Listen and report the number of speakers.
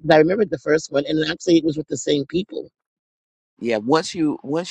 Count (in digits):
2